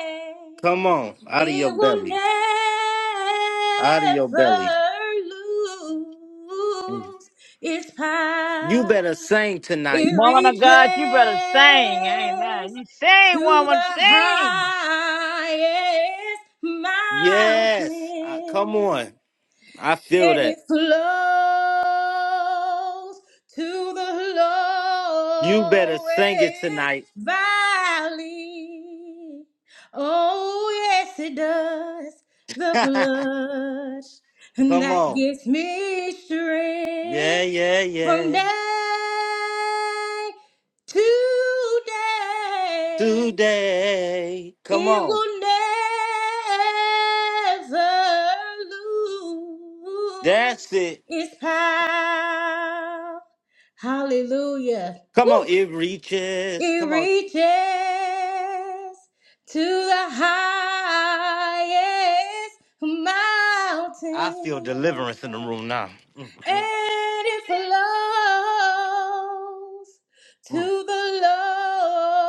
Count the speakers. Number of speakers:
three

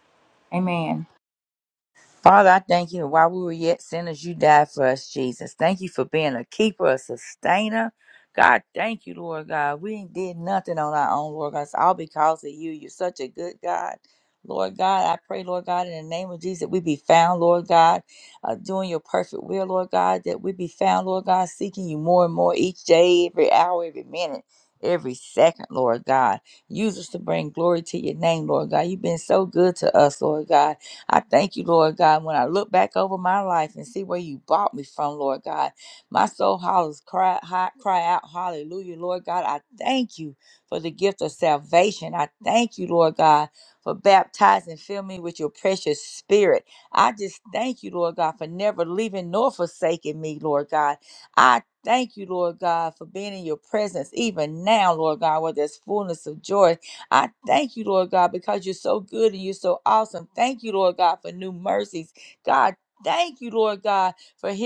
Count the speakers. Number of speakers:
one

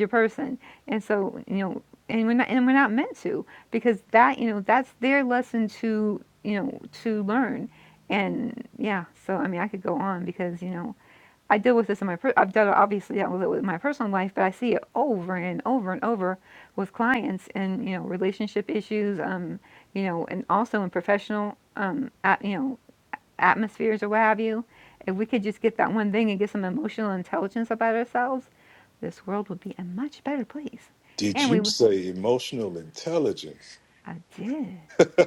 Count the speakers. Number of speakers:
two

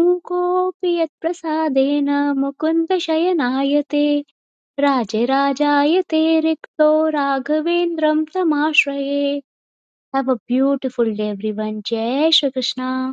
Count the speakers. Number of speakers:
one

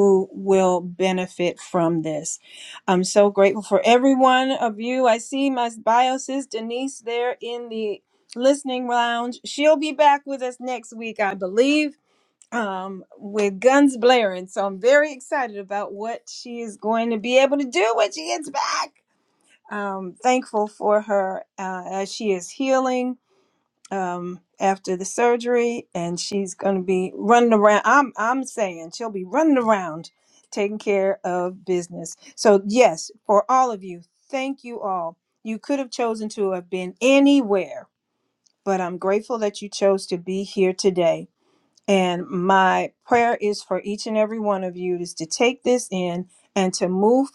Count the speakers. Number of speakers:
one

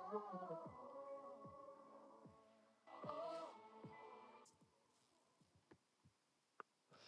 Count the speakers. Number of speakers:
zero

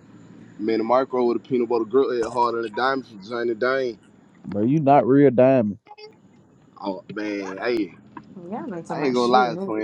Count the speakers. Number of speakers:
three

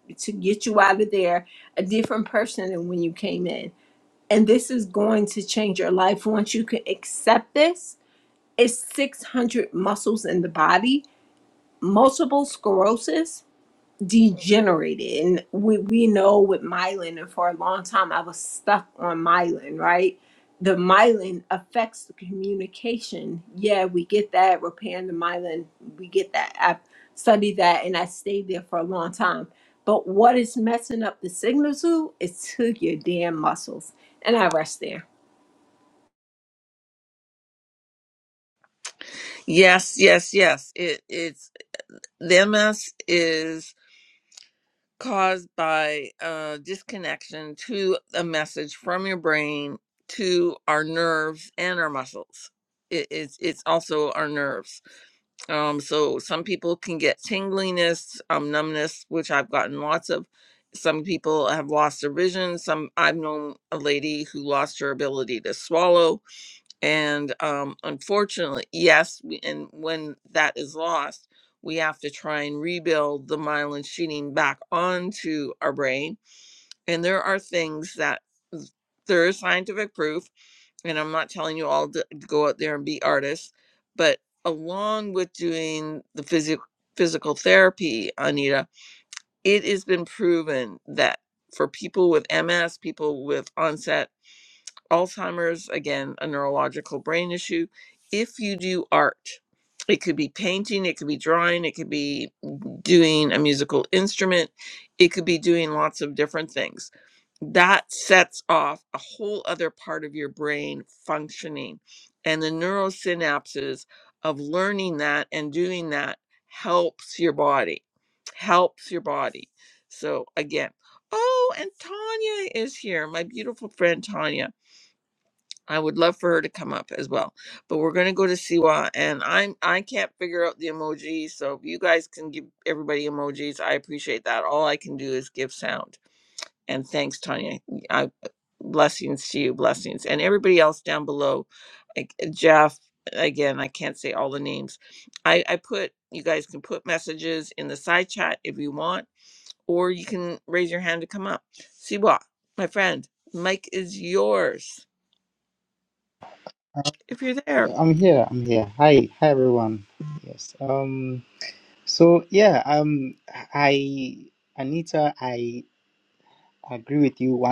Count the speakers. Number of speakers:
three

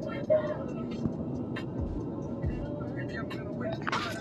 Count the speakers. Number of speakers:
zero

